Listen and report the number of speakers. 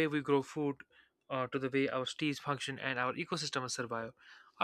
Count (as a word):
one